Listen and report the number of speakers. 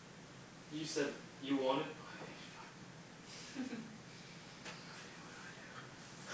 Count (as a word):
one